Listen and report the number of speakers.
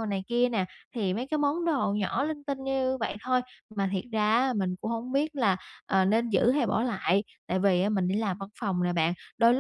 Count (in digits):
1